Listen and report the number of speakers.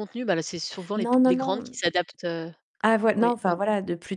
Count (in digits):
2